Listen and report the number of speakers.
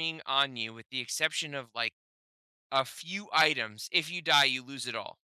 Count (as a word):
one